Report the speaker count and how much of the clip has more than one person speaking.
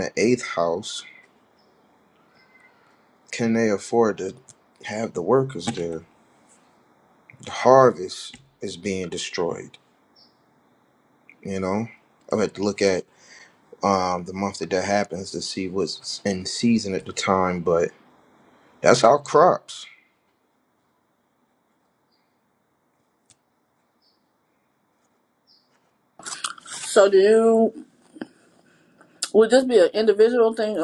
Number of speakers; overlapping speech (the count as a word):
two, no overlap